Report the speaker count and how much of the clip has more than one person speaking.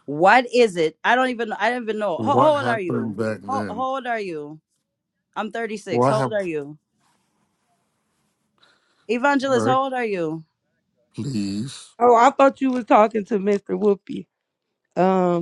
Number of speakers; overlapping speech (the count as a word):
three, about 13%